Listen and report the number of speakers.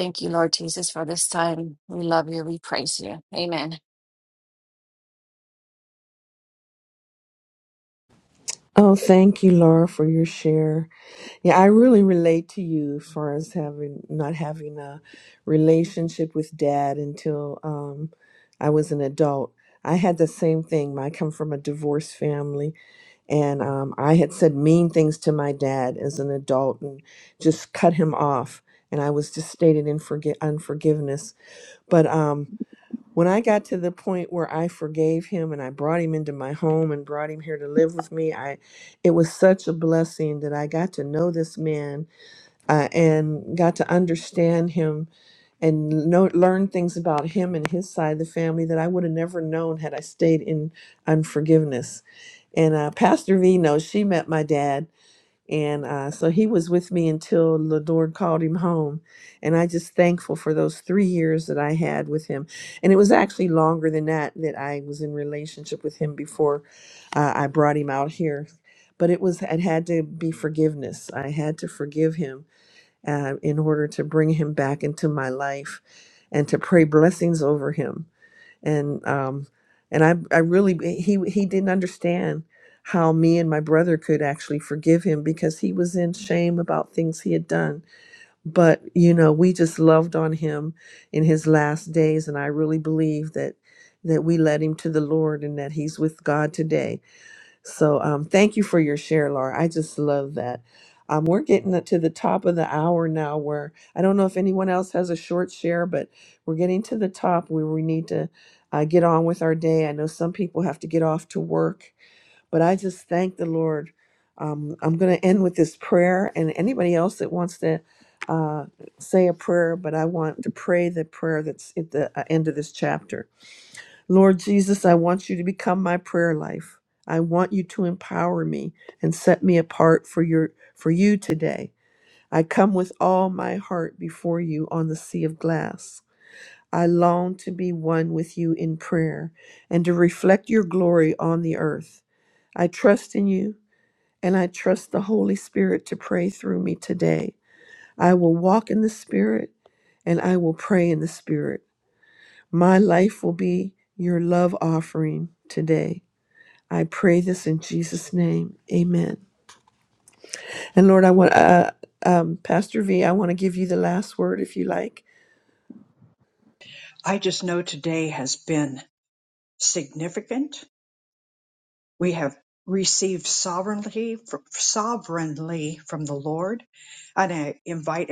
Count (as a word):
three